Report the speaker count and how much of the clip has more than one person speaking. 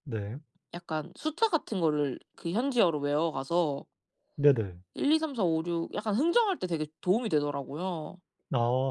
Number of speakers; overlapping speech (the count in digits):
2, no overlap